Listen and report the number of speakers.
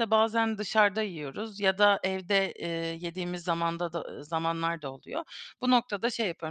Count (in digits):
1